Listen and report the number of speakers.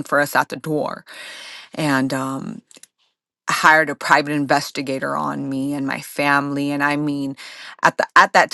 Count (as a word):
one